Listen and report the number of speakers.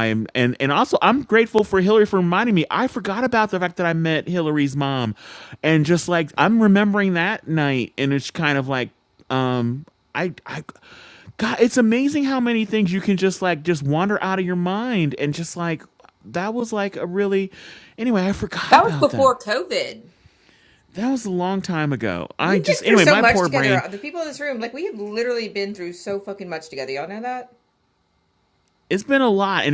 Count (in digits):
2